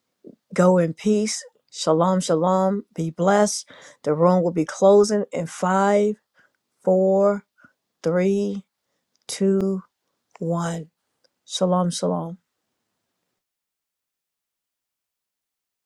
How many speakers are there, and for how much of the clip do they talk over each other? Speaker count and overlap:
one, no overlap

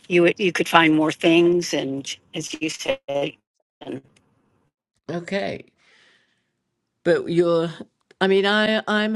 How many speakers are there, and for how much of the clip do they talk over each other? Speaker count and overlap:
two, no overlap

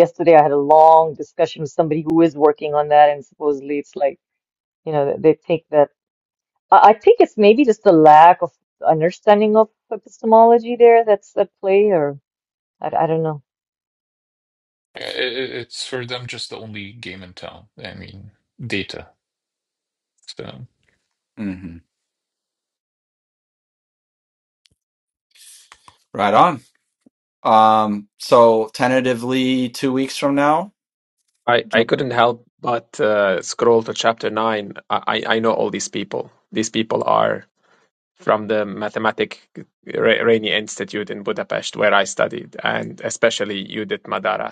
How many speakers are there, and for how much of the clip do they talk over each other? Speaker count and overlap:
four, under 1%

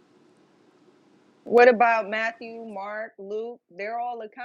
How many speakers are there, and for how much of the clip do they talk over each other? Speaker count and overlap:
one, no overlap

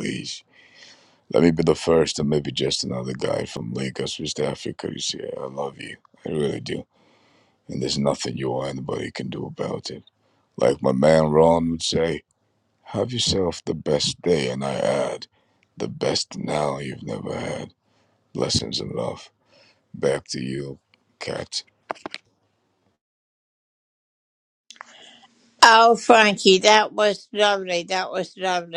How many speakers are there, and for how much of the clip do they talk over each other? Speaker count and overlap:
two, no overlap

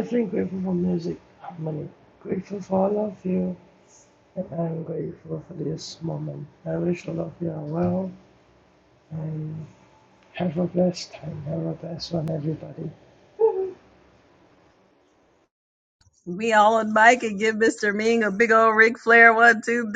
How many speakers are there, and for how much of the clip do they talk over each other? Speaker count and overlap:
two, no overlap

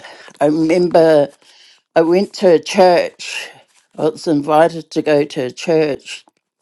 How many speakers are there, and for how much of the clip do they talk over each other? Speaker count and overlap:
one, no overlap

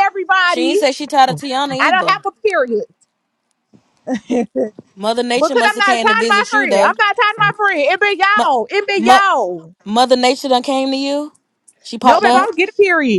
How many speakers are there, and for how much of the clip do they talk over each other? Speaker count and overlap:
two, about 23%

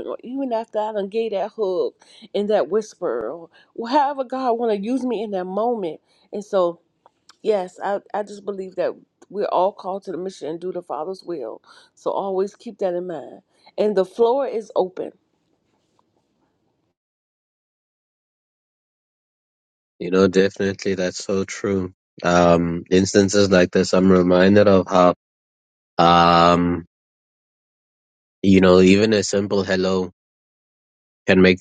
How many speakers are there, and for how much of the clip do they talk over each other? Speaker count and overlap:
two, no overlap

